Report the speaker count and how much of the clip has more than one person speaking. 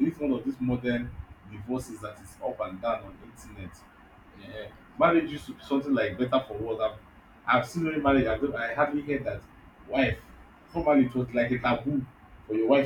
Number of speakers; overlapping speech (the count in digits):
1, no overlap